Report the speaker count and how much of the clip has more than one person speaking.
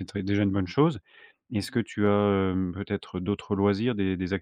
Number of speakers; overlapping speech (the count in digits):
1, no overlap